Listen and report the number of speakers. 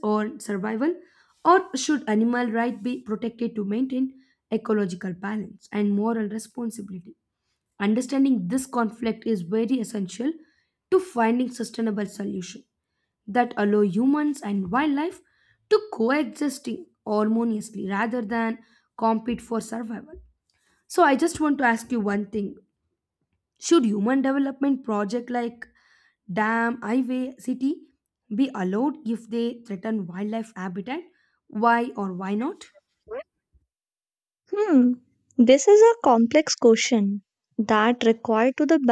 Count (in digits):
2